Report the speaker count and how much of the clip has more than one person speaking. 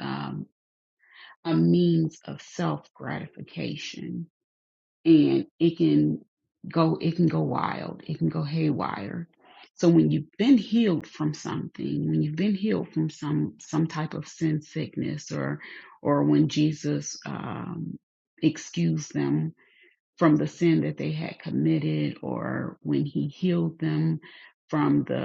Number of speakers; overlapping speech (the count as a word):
one, no overlap